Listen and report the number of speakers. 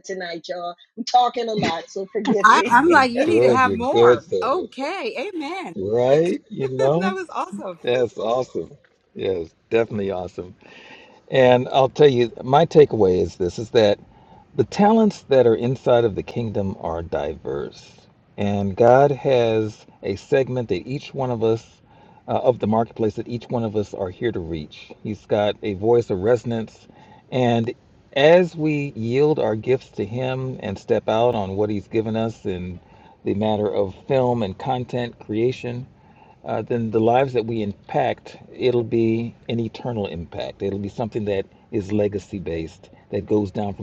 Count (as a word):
three